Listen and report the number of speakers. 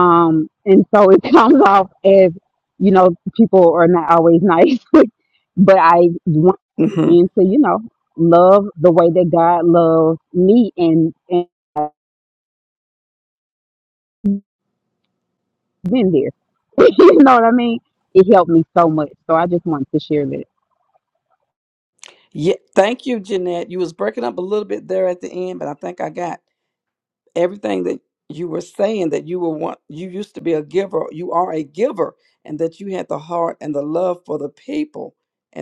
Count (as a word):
two